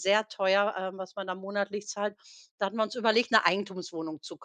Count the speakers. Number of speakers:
1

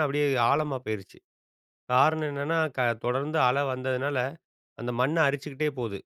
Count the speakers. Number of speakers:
1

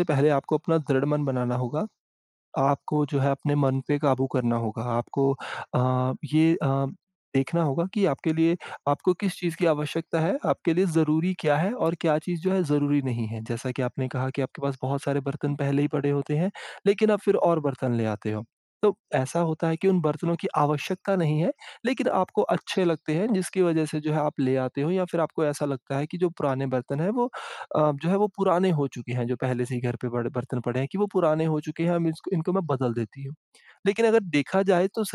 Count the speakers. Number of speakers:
1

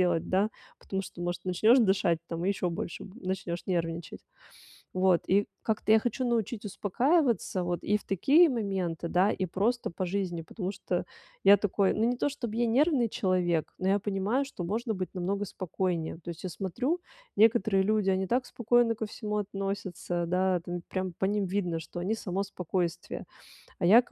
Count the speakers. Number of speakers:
1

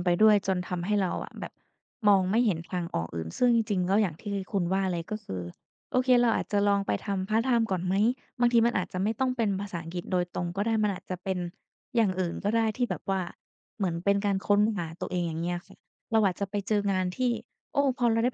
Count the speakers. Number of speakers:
1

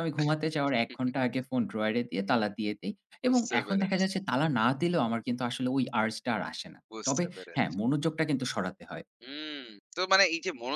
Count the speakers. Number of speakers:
2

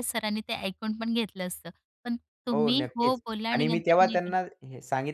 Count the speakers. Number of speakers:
2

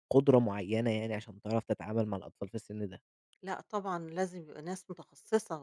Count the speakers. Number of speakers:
2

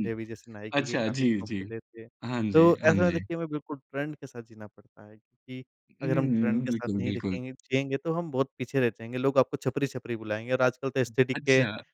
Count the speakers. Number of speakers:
2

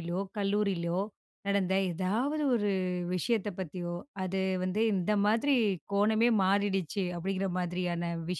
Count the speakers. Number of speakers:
1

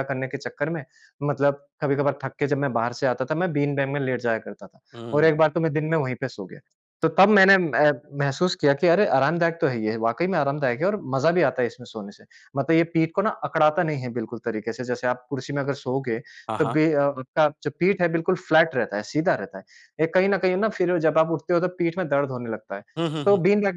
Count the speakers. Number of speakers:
2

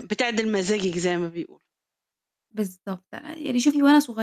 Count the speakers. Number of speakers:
2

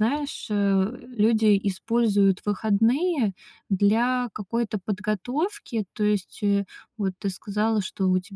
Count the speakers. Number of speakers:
1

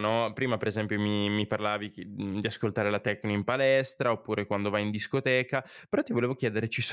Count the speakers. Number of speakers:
1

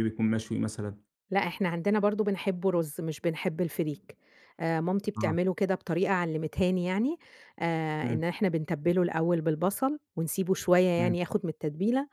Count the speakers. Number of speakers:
2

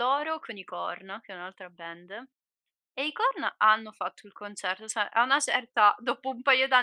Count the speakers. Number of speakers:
1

